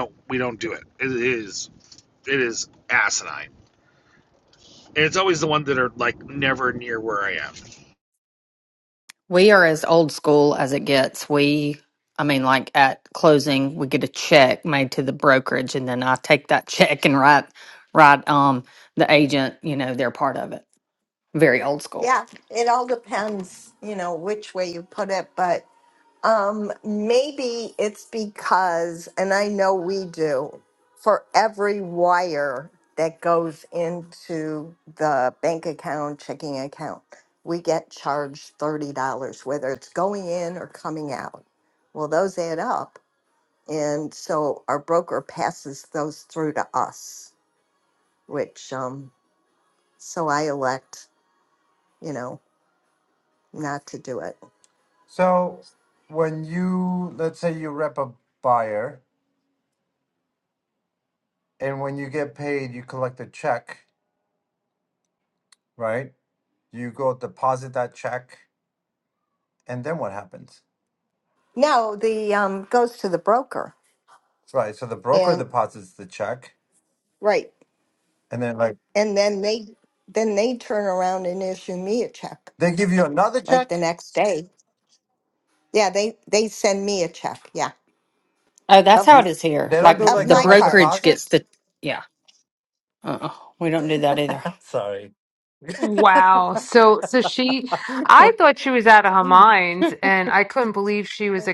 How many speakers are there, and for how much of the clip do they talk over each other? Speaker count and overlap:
5, about 3%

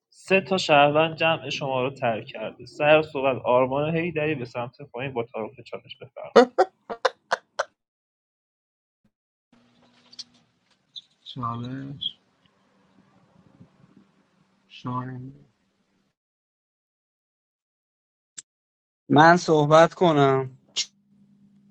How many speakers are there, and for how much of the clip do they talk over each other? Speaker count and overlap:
3, no overlap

